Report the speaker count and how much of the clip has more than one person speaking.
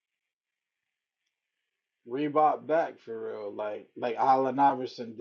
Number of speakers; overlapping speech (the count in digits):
1, no overlap